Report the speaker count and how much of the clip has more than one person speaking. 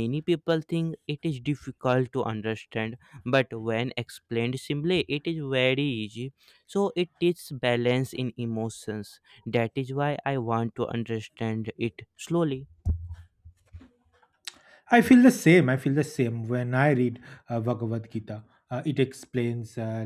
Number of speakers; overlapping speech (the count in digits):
2, no overlap